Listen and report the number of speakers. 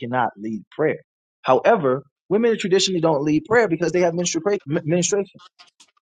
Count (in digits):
1